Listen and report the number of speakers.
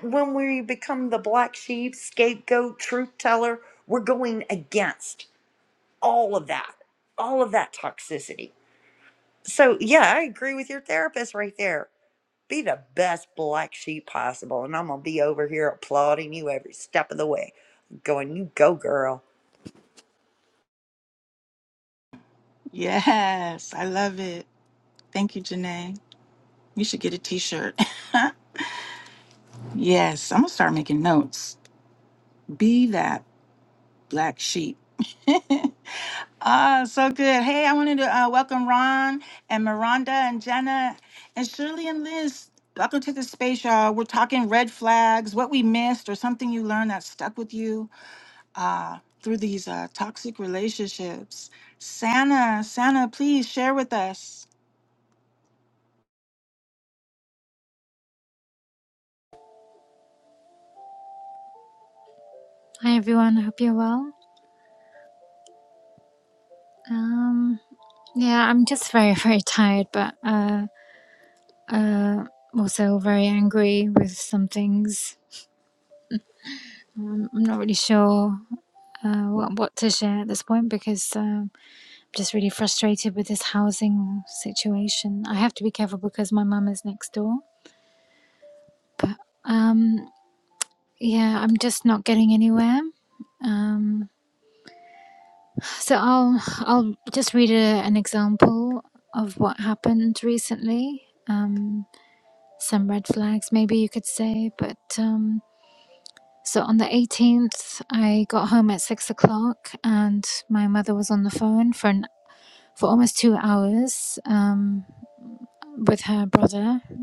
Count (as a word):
three